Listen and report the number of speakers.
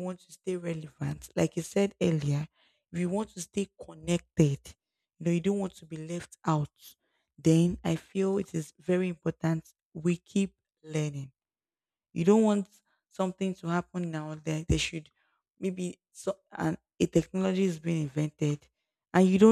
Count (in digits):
1